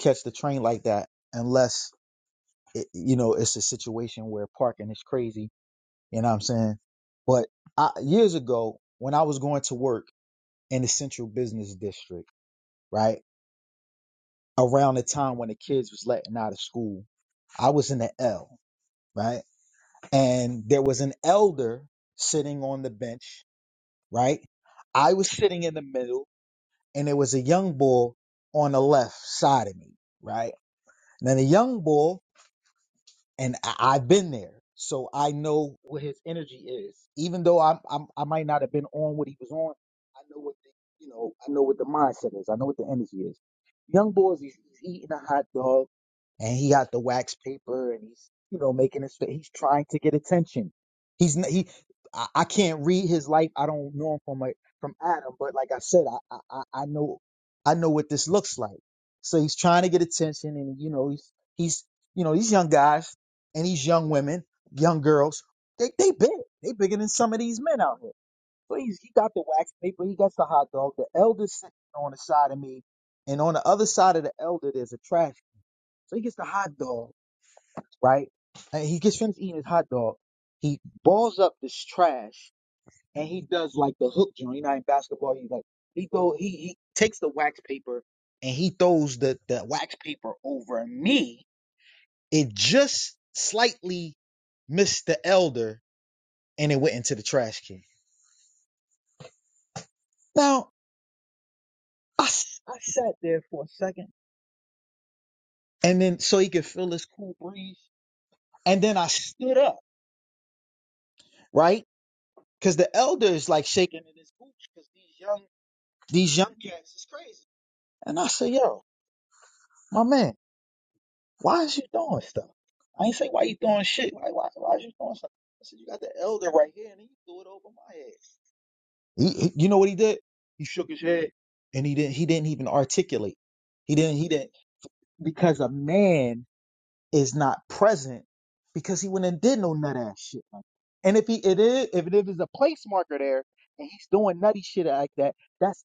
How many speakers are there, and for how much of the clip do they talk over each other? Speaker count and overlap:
one, no overlap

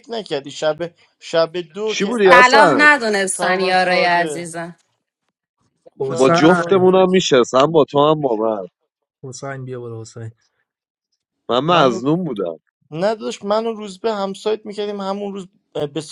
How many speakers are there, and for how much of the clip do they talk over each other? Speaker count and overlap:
four, about 21%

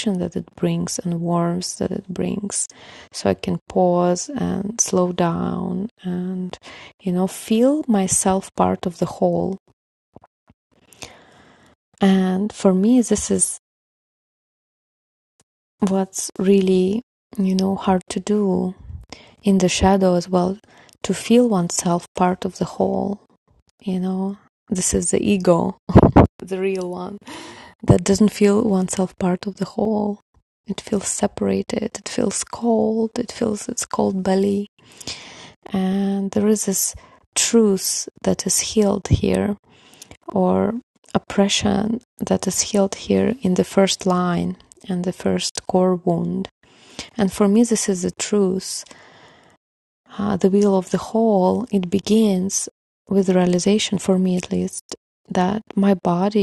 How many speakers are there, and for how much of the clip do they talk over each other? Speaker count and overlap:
one, no overlap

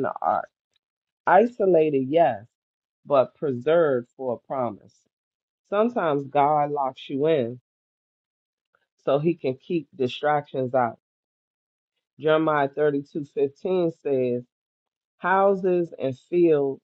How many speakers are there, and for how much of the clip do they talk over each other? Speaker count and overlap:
one, no overlap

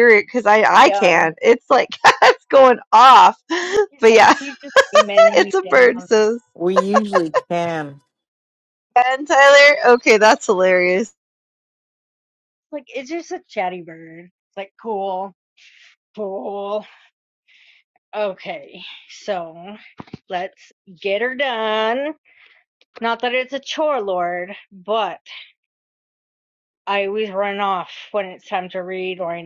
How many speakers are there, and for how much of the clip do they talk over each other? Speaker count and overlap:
three, about 5%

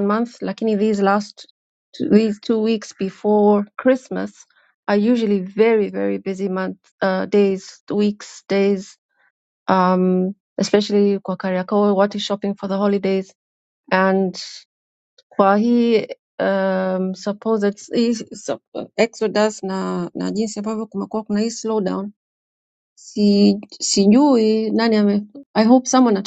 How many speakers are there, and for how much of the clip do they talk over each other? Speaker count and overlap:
one, no overlap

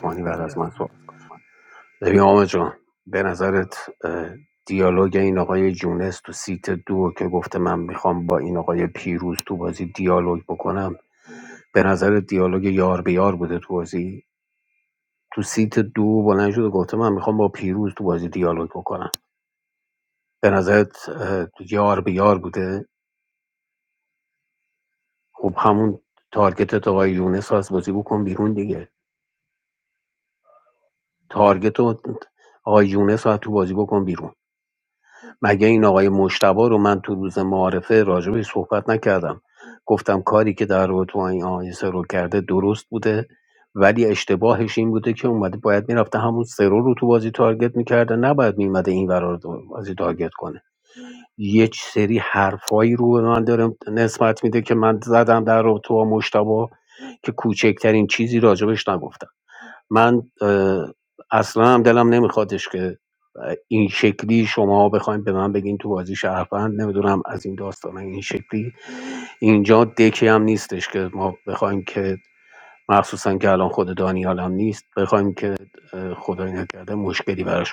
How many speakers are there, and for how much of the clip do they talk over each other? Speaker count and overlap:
one, no overlap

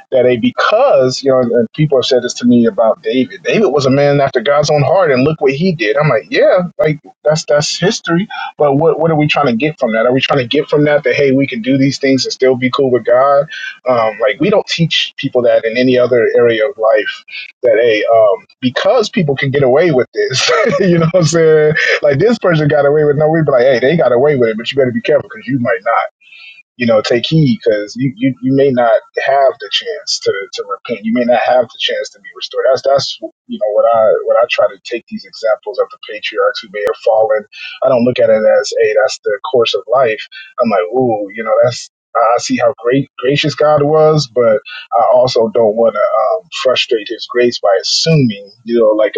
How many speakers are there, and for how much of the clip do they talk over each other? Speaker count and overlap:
one, no overlap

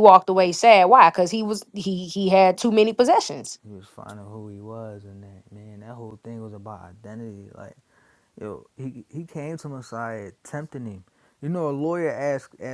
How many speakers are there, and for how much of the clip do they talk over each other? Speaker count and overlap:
two, no overlap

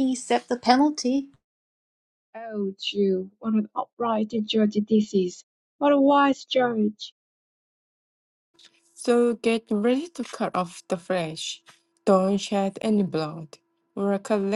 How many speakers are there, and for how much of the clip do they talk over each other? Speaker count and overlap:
three, no overlap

